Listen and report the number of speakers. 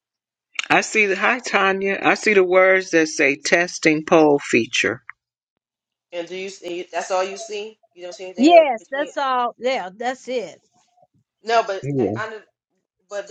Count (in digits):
3